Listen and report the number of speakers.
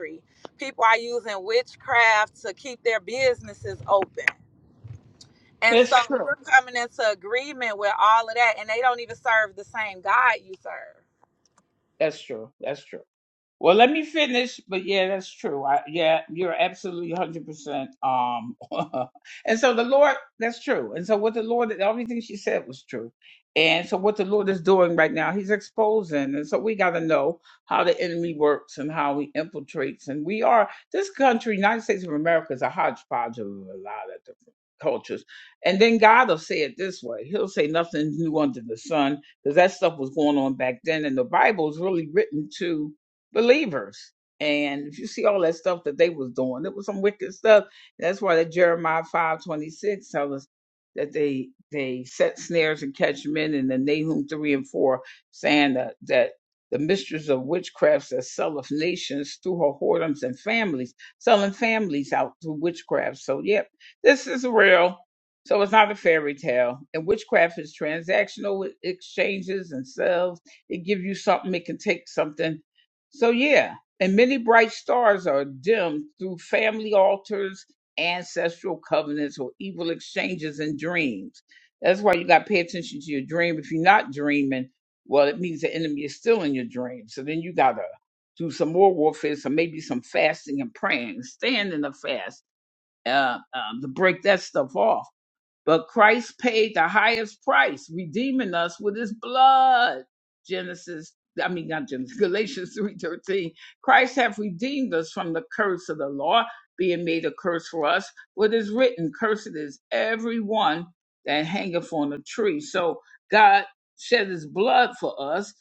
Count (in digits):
2